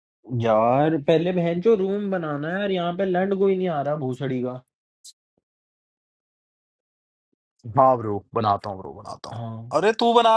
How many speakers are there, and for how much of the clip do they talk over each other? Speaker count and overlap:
two, about 1%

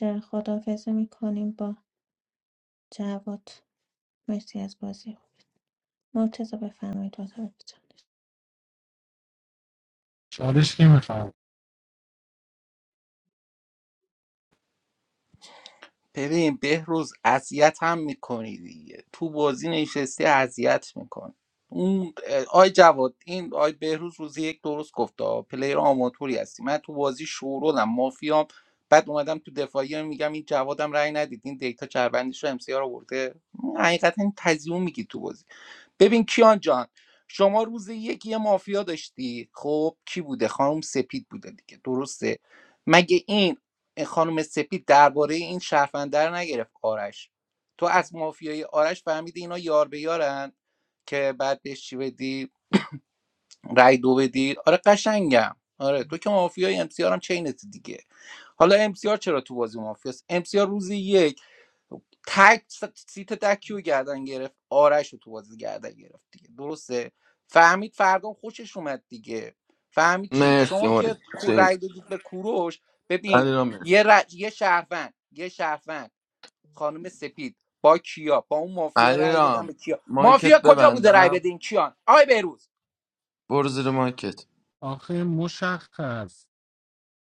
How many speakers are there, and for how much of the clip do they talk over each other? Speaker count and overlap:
four, about 4%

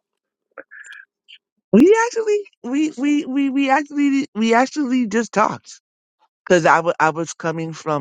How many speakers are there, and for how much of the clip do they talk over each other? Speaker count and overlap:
one, no overlap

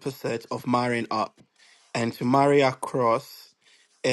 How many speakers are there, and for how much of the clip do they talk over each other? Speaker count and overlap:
one, no overlap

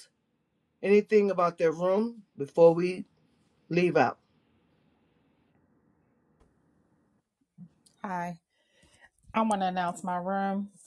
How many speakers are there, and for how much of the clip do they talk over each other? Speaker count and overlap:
two, no overlap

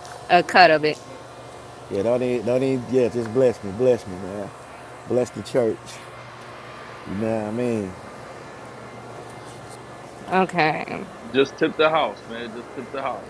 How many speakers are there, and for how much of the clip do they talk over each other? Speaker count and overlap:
three, no overlap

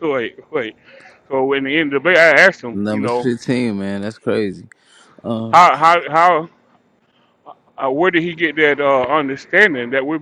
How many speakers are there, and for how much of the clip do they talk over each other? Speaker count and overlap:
two, about 6%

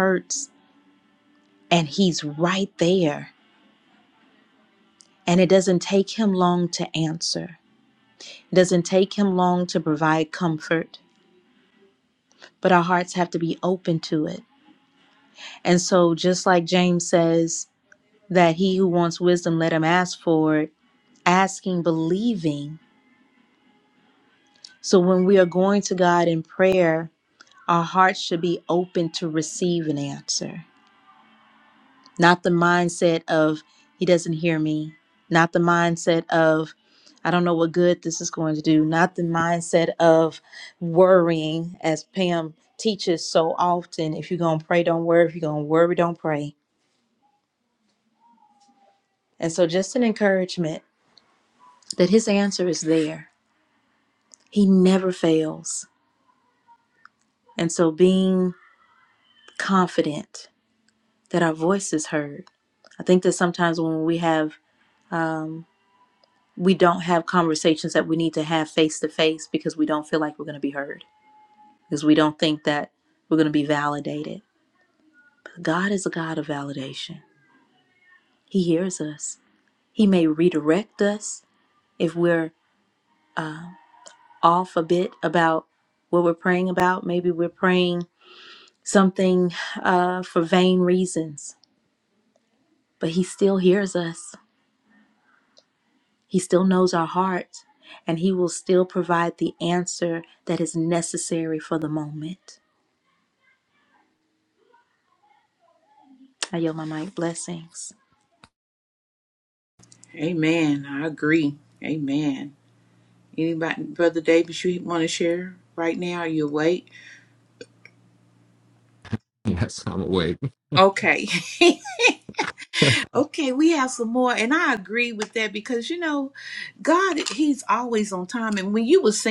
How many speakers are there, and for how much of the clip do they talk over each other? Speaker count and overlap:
three, no overlap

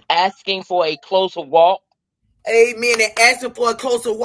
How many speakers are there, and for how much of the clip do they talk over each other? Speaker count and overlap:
two, no overlap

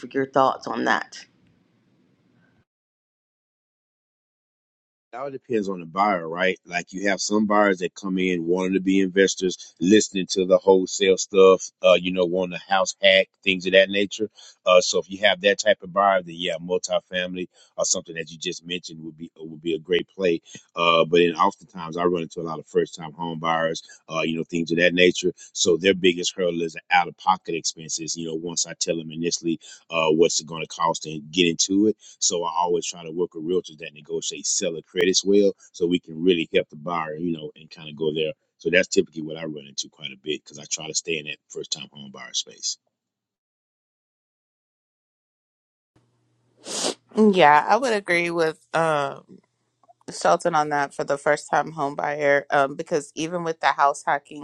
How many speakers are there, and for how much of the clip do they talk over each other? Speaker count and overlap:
three, no overlap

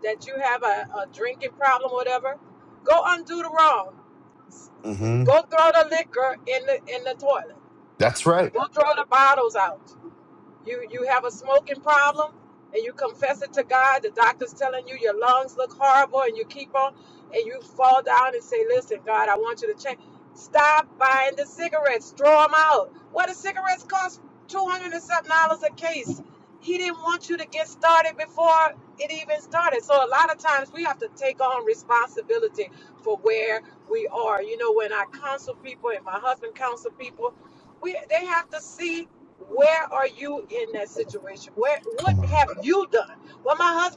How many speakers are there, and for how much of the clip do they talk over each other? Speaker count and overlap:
two, about 1%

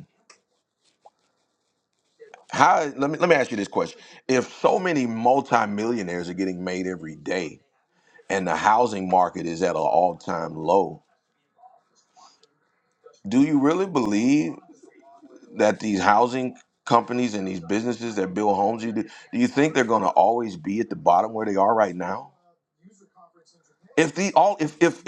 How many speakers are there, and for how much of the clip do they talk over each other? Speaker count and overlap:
one, no overlap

